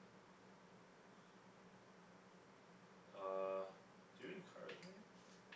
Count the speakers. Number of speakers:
1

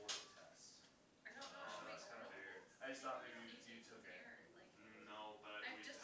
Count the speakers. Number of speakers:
3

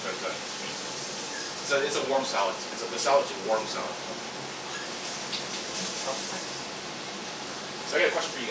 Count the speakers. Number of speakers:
1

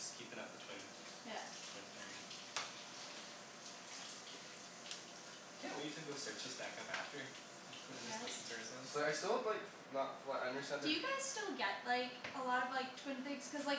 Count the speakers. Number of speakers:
3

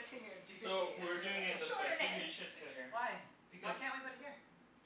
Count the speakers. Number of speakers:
3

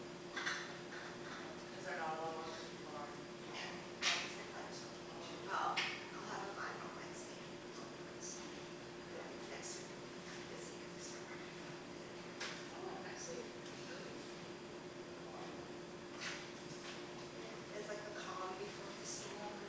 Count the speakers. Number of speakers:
2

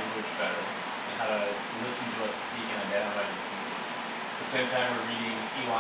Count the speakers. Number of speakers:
1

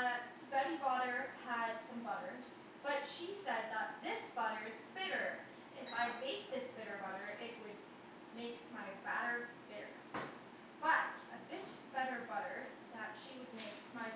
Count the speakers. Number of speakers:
1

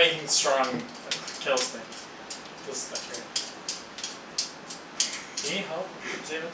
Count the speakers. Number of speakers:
1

